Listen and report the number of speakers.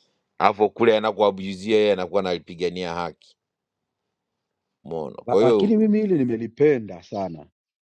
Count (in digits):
2